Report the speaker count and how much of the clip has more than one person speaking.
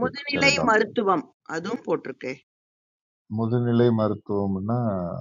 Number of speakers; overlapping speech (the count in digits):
2, about 16%